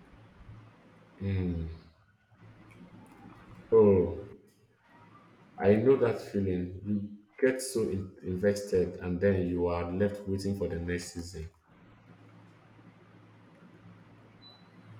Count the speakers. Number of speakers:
one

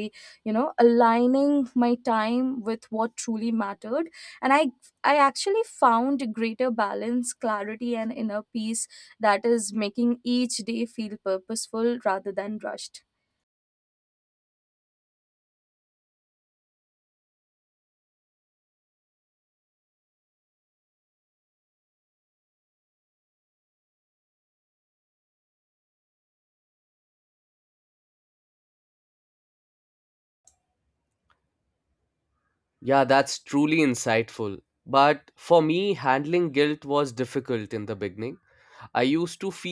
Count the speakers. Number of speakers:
two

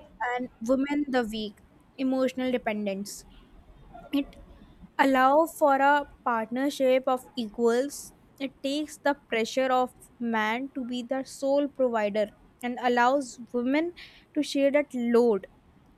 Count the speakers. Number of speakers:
one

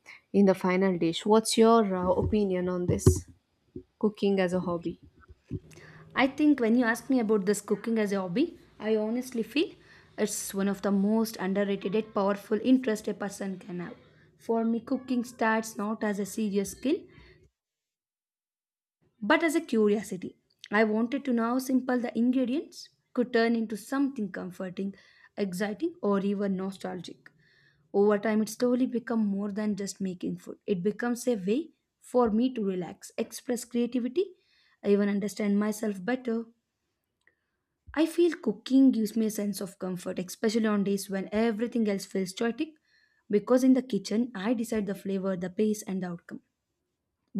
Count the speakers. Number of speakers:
two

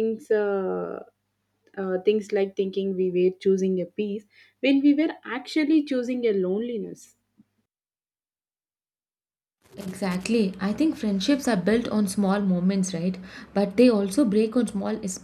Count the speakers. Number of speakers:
two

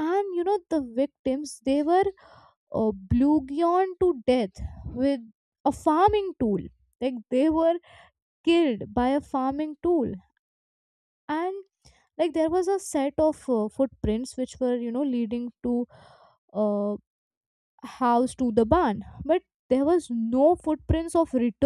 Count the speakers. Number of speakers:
one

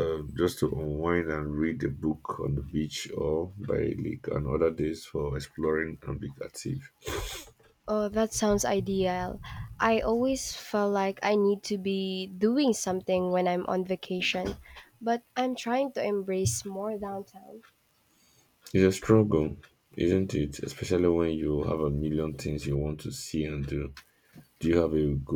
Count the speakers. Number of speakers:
two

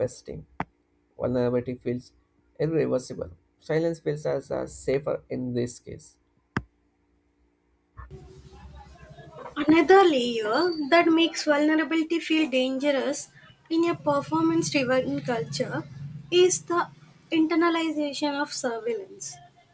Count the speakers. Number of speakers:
two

